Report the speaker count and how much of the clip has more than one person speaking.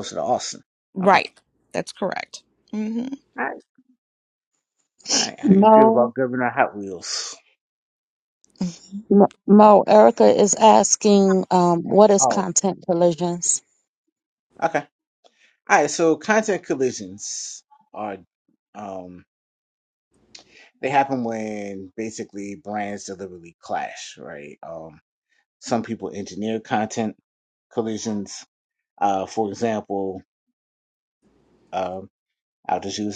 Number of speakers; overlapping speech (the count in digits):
3, about 3%